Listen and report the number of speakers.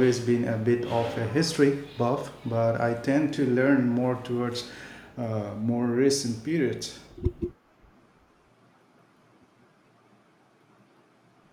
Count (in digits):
1